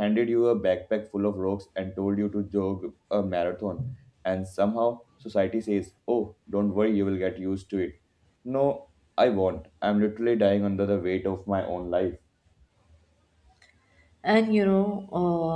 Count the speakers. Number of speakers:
2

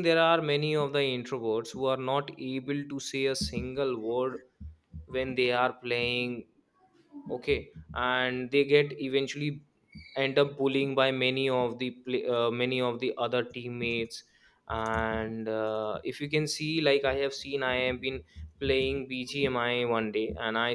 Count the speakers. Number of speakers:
1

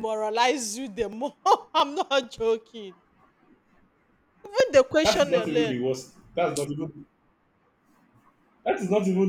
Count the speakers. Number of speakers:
2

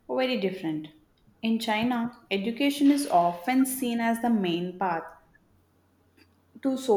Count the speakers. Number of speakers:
1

